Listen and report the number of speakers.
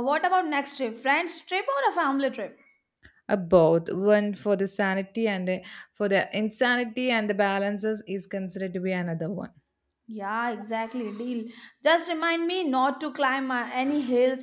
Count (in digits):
2